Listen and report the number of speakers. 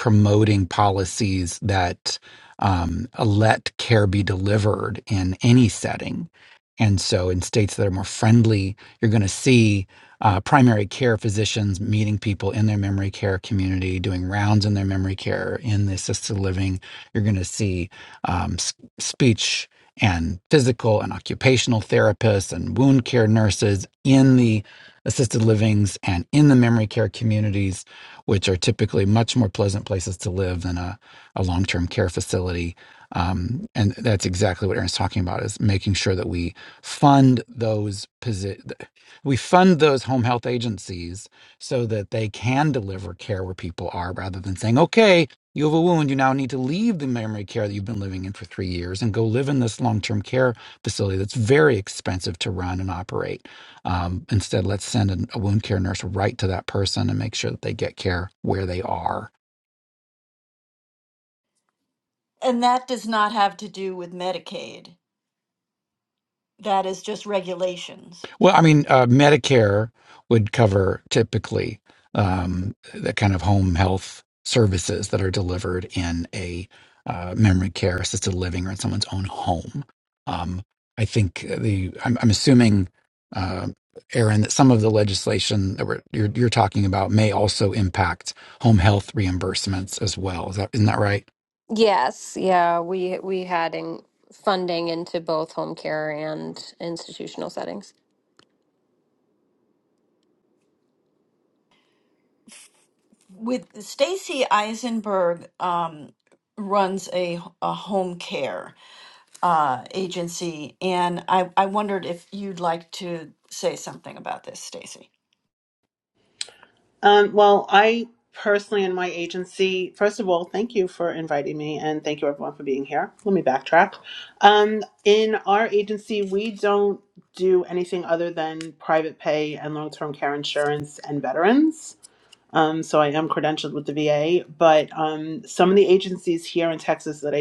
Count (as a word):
four